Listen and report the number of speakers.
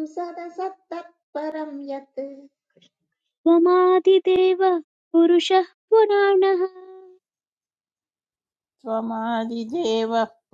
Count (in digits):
3